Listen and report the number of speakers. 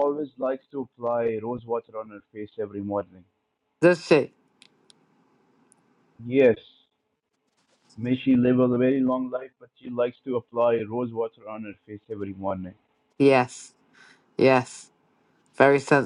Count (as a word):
two